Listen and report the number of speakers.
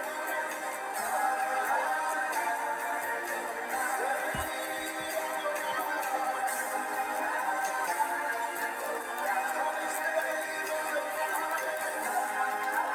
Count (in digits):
0